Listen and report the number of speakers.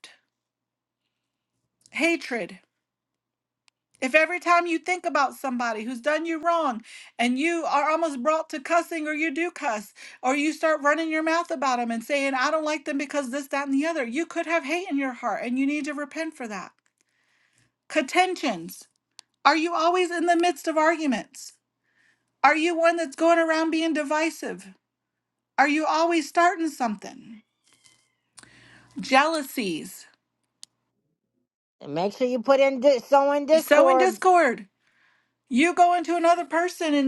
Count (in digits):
2